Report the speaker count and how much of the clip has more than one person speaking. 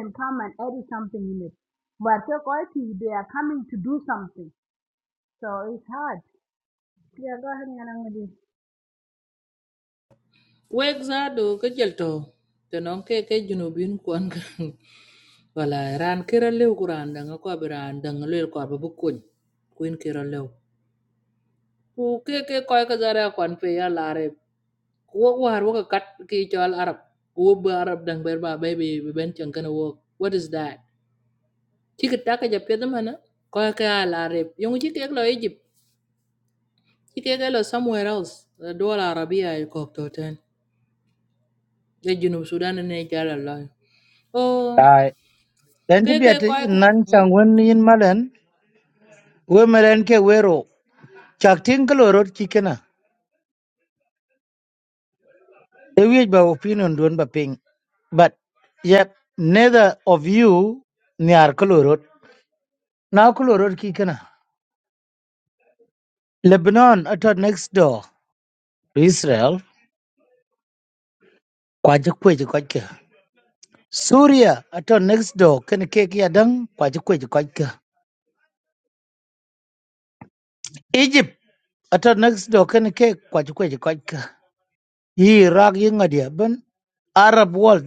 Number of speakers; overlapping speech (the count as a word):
three, about 2%